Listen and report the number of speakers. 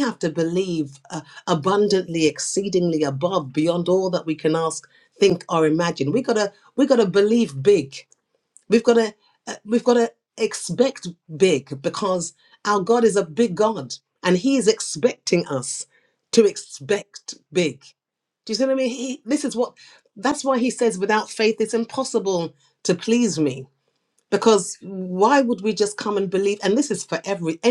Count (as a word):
one